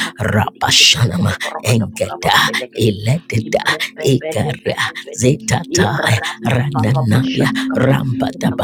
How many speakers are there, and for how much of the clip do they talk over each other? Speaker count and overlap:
2, about 67%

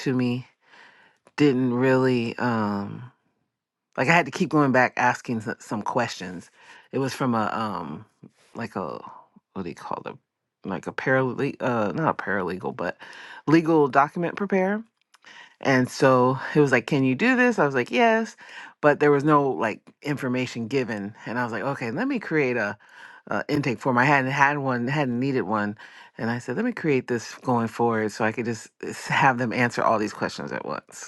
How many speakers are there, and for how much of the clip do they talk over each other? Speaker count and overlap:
1, no overlap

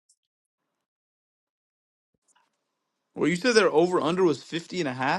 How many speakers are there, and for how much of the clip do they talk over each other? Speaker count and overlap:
1, no overlap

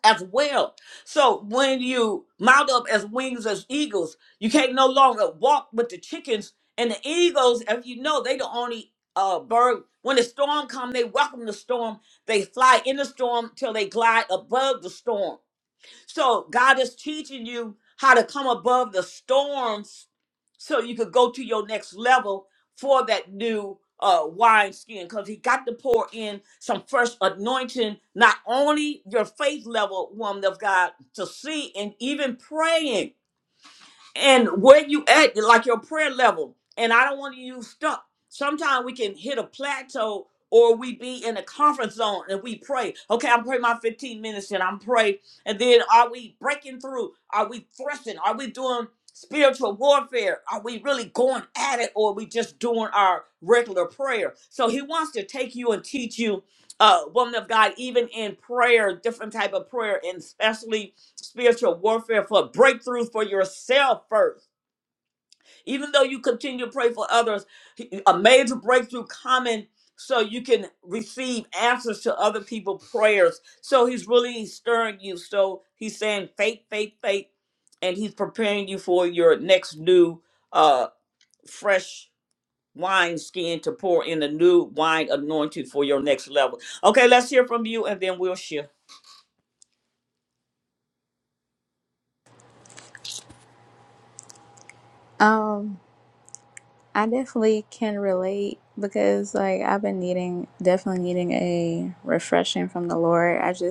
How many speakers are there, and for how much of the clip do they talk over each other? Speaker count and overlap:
2, no overlap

